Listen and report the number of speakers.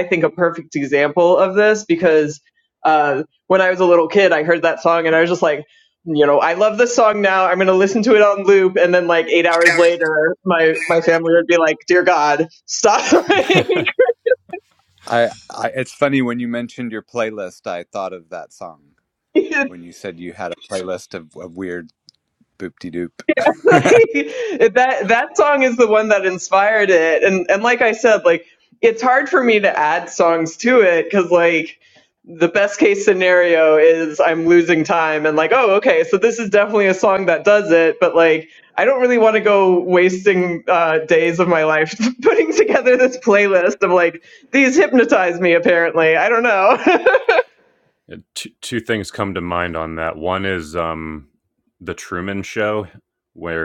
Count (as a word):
three